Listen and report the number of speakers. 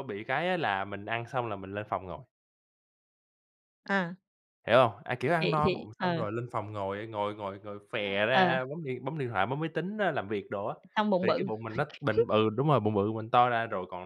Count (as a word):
two